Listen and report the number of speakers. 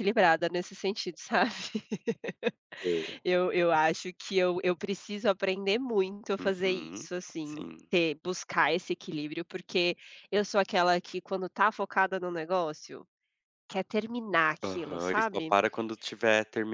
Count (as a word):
two